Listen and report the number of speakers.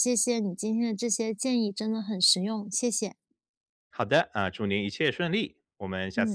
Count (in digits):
2